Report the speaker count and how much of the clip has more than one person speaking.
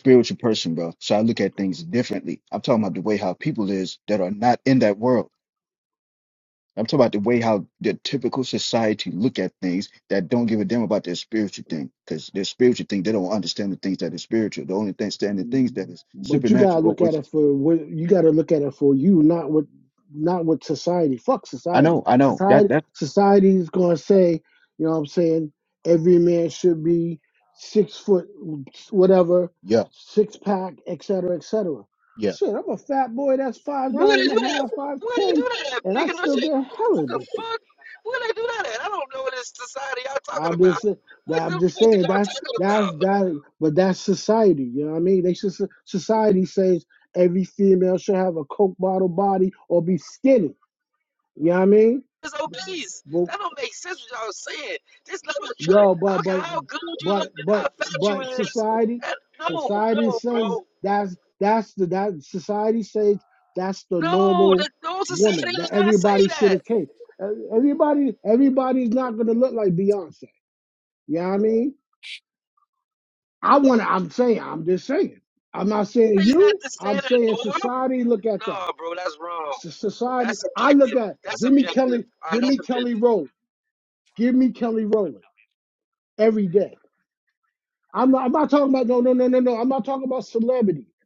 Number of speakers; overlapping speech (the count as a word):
three, about 18%